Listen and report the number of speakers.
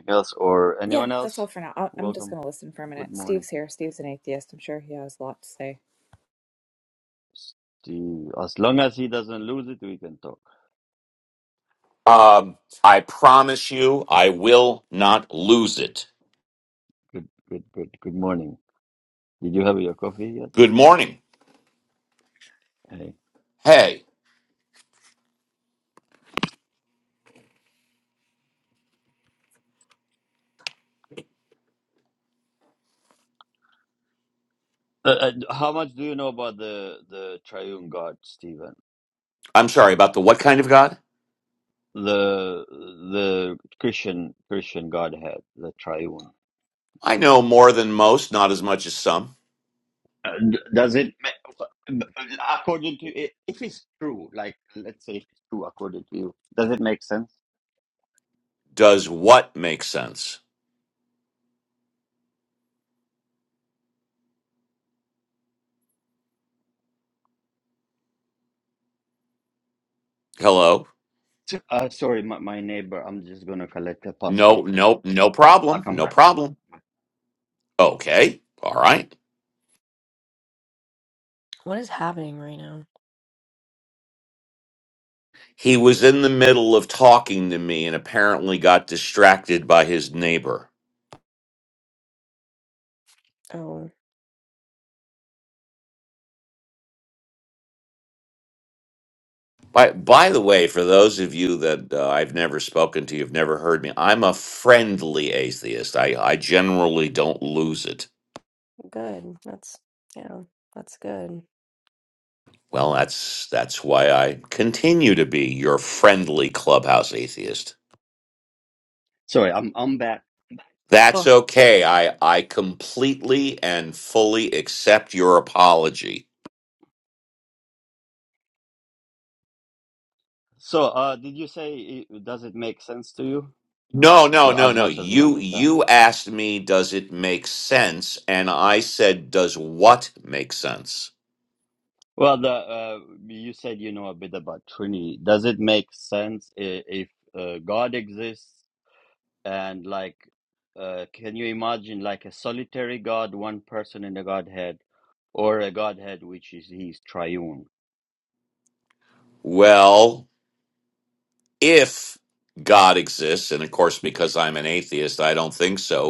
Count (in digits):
4